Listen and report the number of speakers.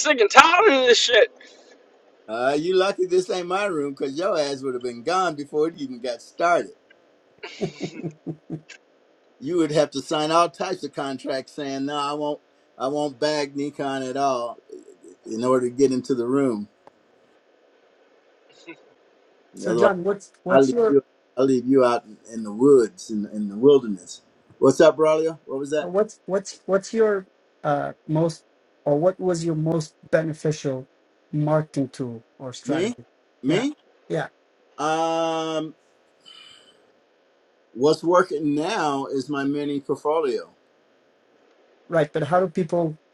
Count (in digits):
3